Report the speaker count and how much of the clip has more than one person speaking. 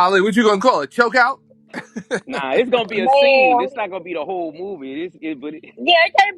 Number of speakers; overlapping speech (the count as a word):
three, about 14%